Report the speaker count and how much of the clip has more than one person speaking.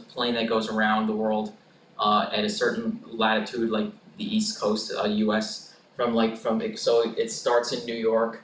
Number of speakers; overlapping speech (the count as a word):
one, no overlap